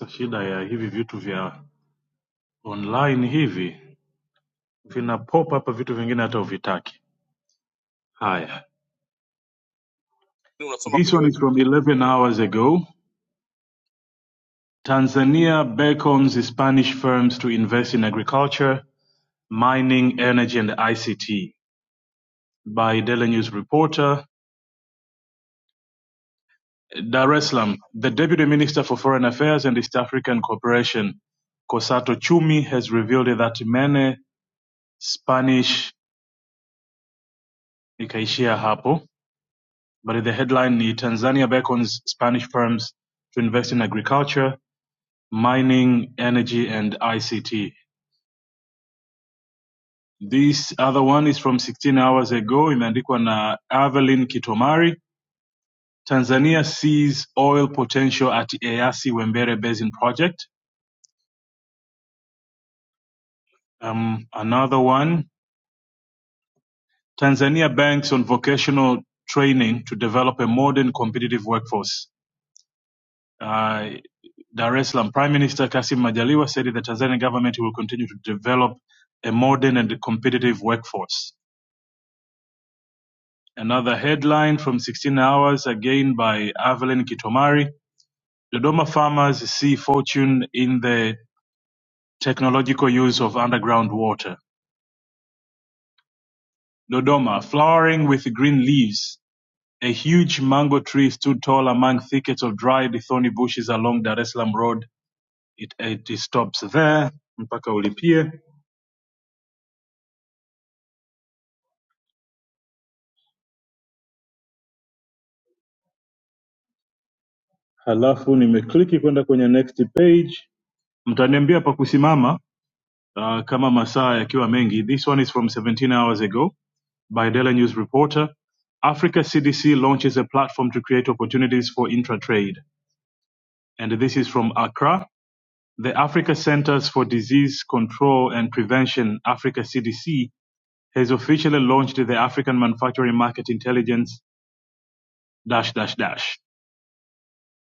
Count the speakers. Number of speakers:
one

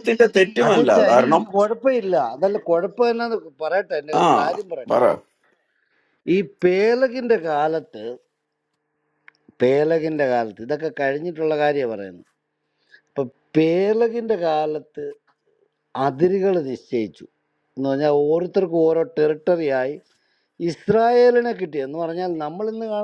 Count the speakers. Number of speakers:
two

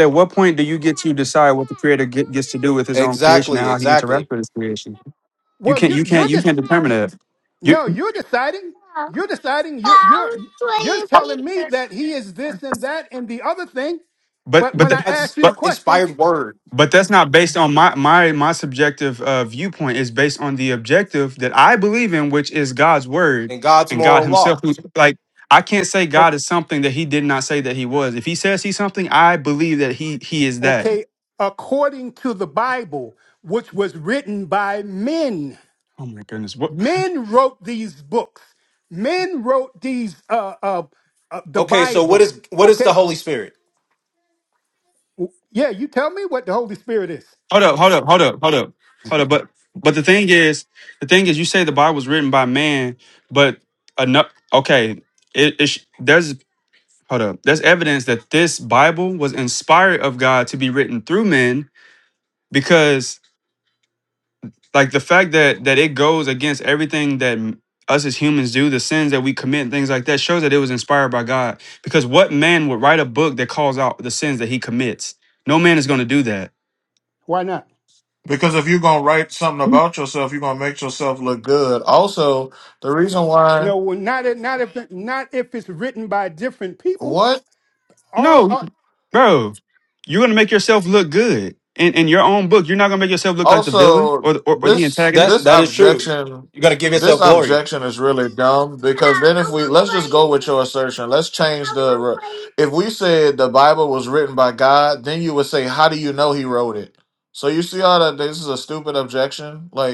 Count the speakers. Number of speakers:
four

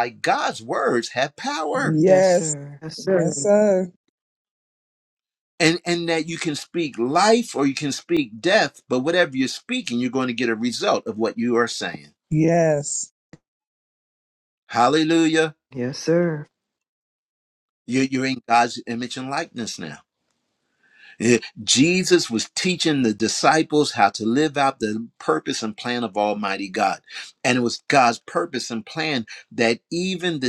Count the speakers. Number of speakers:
three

